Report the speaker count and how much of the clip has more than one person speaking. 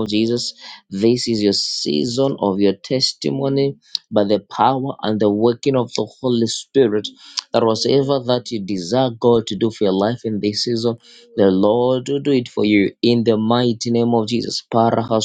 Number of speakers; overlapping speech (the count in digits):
1, no overlap